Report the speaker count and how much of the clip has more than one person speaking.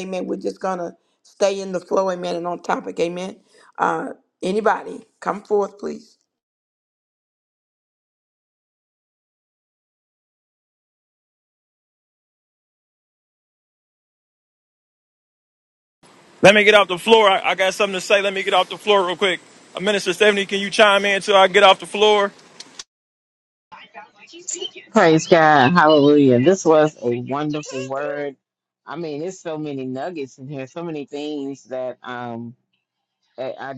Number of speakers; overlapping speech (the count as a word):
three, no overlap